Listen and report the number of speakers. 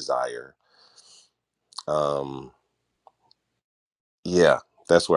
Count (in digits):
1